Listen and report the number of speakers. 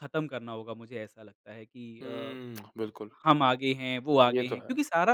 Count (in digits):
2